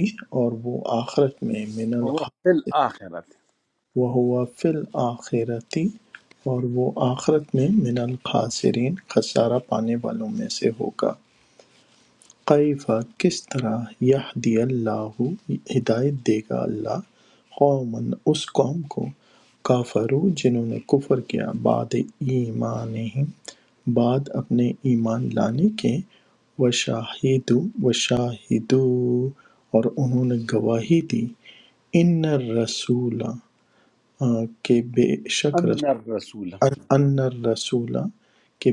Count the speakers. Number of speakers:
2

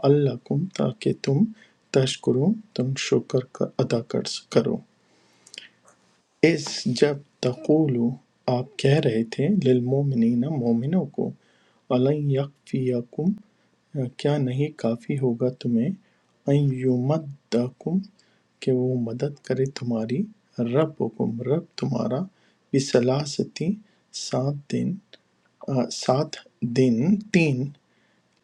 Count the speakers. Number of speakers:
1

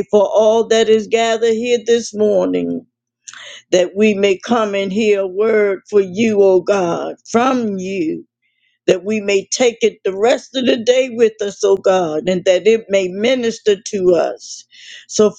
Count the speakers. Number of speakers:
1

